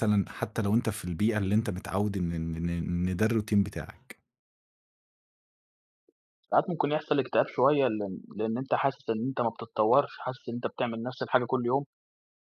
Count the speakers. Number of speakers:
2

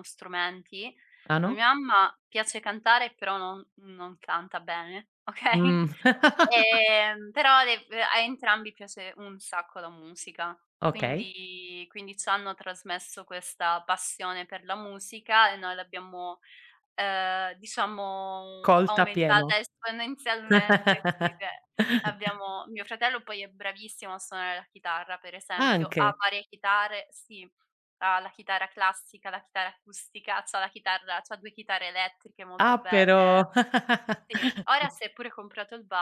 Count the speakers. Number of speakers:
2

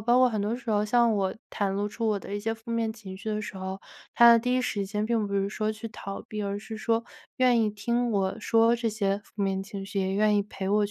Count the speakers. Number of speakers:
1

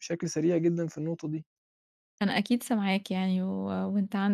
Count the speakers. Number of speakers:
2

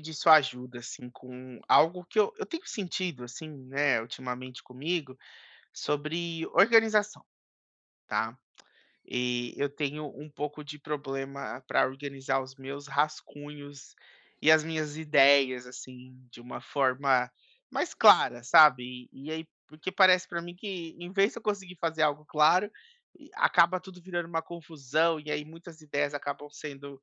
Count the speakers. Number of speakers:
1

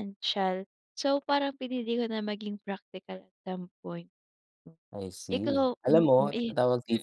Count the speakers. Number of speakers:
2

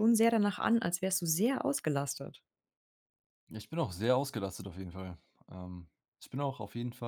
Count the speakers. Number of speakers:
2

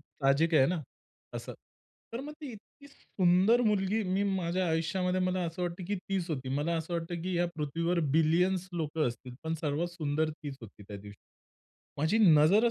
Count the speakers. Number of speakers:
1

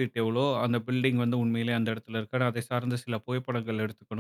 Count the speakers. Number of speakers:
1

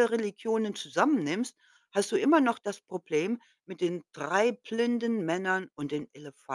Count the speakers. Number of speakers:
1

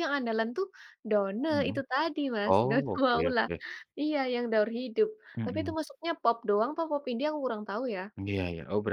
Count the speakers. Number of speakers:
2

